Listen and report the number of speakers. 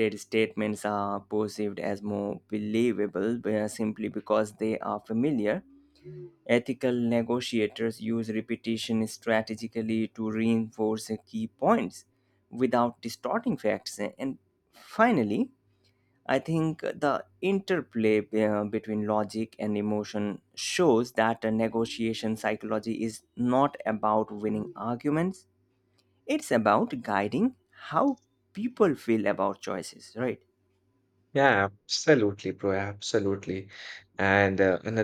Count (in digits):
2